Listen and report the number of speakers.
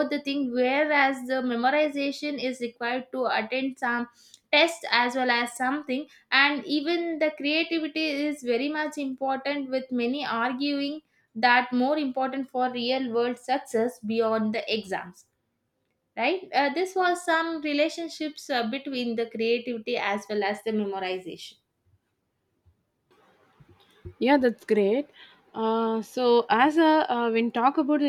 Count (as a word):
two